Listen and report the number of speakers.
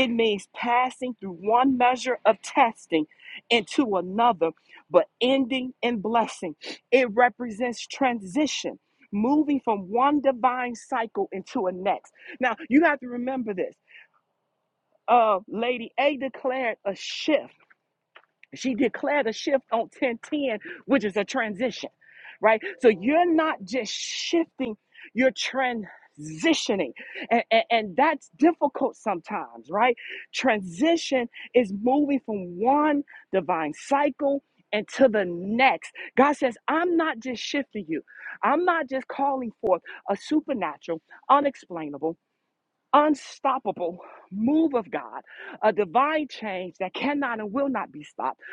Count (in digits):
1